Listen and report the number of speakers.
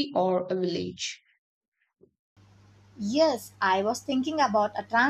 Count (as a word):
two